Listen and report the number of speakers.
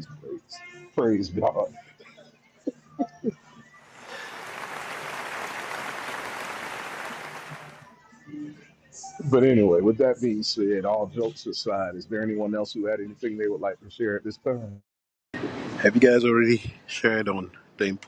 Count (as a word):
two